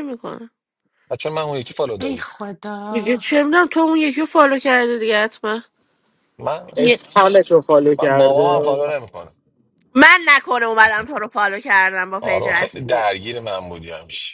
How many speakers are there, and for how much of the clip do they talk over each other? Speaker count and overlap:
four, about 15%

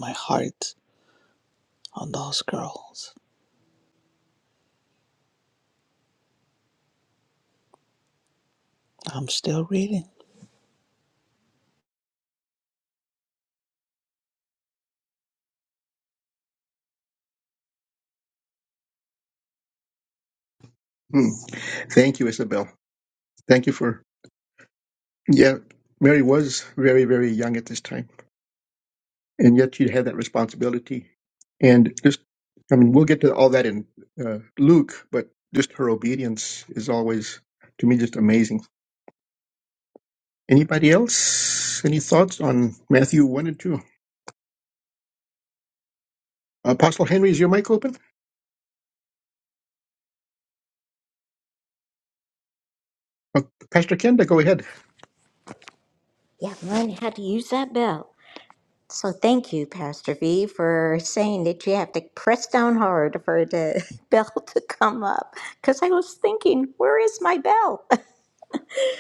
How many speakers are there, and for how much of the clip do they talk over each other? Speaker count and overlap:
three, no overlap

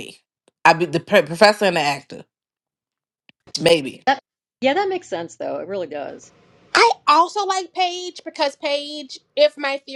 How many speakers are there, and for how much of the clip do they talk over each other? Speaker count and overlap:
three, no overlap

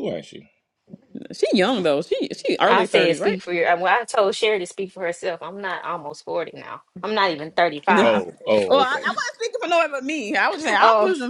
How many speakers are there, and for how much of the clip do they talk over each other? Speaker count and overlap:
three, about 16%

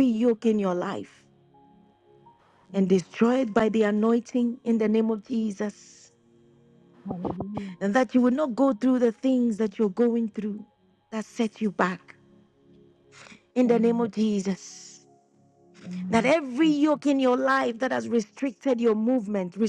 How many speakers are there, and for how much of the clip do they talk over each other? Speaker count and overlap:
two, about 6%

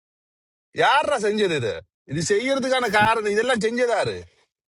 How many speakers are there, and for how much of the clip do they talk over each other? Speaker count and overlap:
one, no overlap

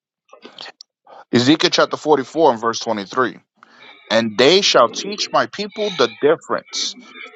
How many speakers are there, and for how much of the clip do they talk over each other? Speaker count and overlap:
one, no overlap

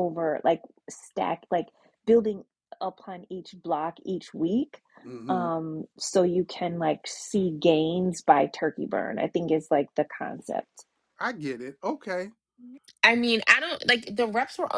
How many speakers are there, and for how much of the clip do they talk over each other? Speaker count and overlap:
three, about 1%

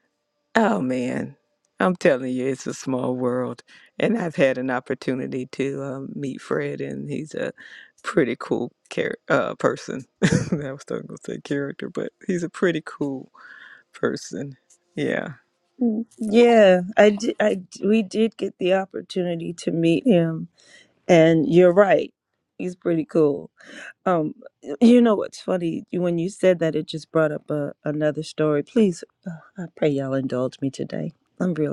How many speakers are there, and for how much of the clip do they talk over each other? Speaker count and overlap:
two, no overlap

